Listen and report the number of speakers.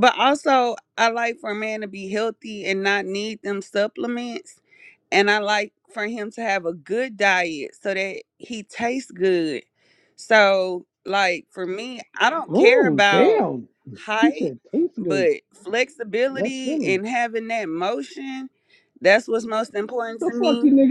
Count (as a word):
two